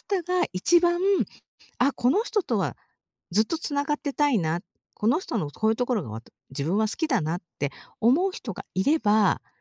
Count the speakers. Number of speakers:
one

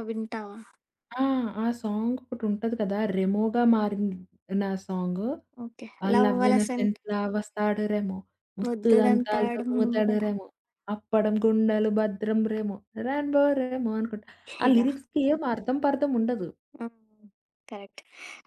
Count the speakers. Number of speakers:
two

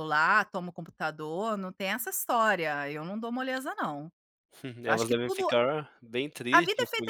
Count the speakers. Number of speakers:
two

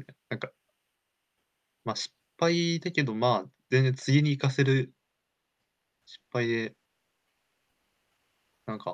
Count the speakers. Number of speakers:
one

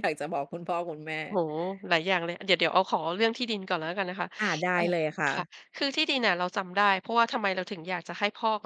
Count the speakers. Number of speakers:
two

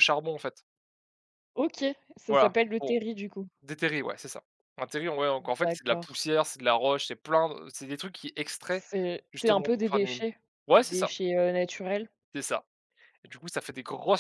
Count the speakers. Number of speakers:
two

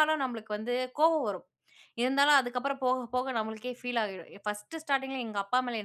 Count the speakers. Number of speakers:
one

